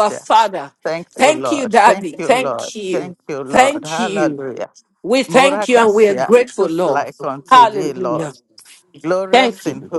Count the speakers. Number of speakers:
2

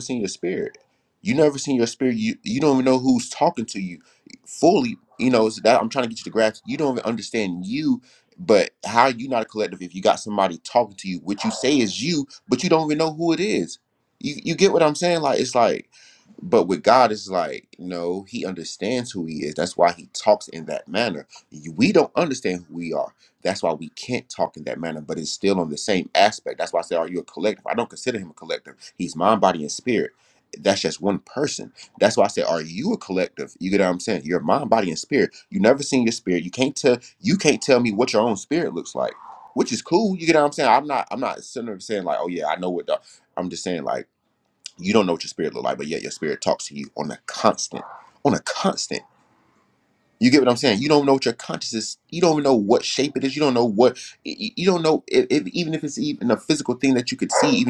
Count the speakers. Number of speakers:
1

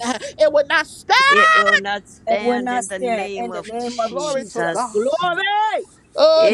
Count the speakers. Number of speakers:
3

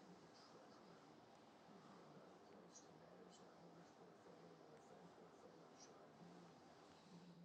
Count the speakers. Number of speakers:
0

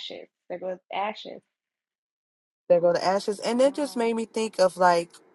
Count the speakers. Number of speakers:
2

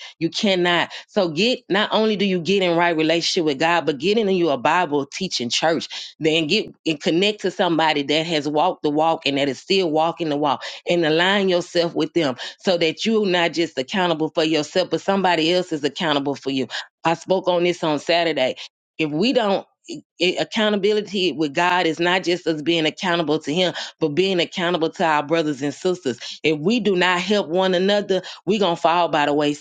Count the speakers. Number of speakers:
1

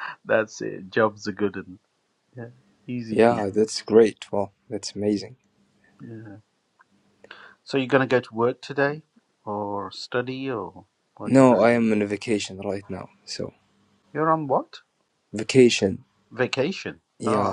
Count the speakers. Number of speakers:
2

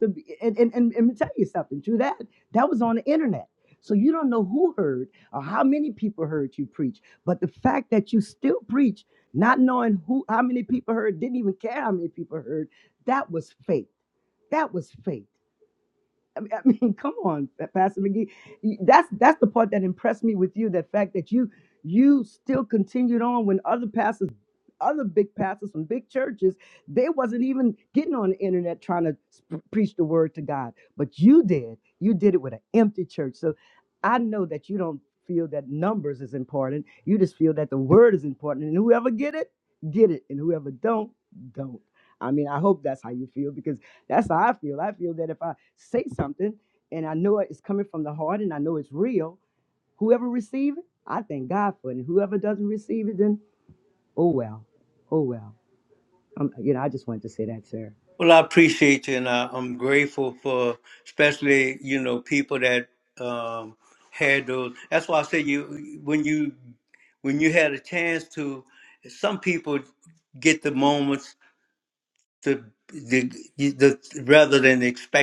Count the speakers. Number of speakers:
2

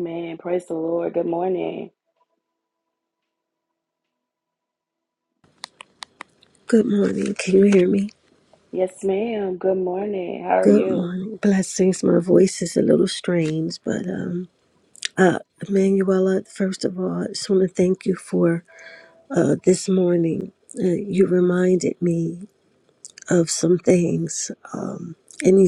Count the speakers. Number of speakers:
2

